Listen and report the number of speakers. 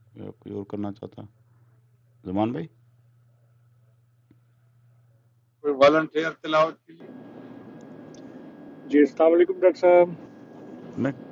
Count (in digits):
3